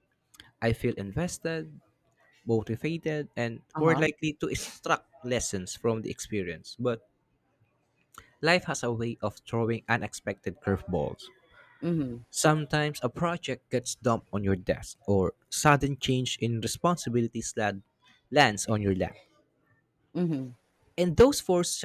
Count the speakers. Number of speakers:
two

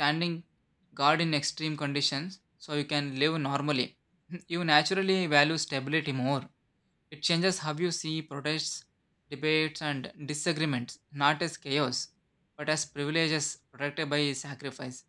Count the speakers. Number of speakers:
one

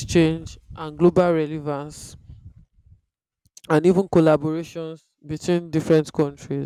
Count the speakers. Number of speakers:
one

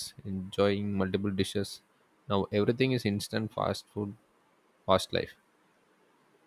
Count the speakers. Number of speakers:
one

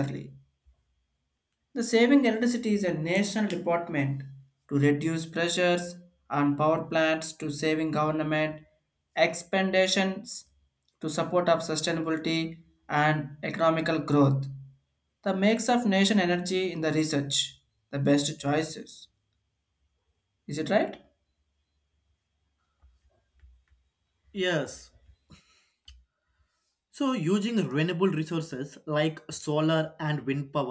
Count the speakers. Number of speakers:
two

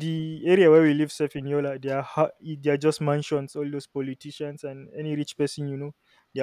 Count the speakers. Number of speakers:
one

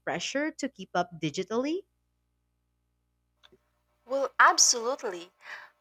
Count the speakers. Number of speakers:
two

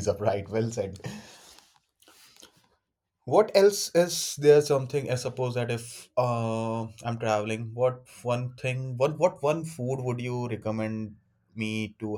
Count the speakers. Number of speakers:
one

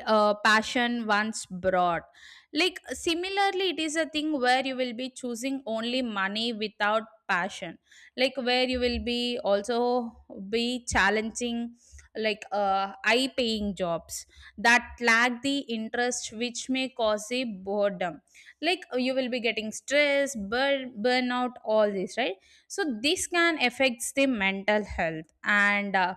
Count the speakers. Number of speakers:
one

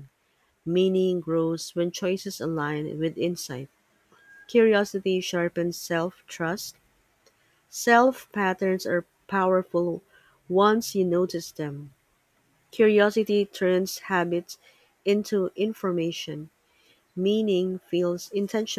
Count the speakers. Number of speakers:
one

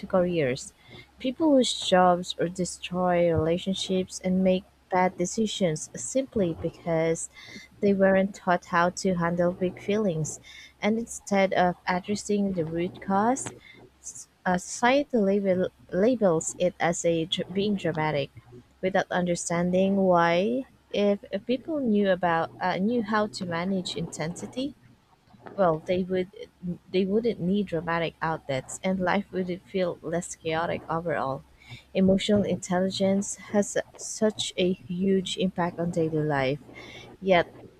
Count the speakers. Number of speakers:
one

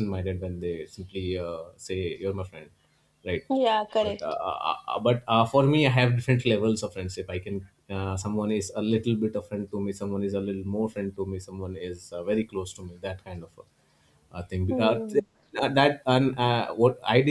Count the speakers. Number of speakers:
two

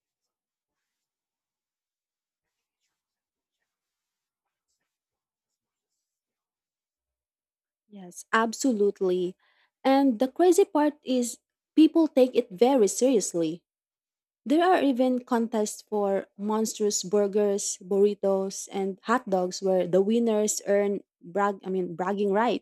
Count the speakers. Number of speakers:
one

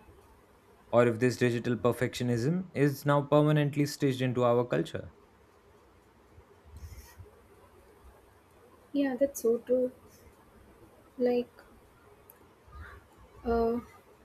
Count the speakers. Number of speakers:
two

